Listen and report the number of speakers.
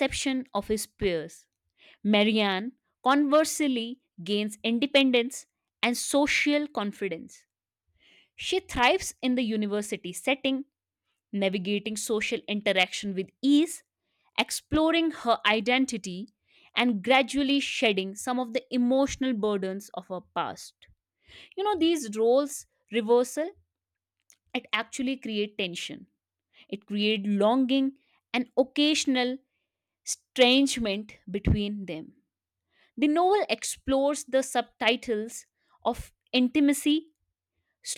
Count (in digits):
1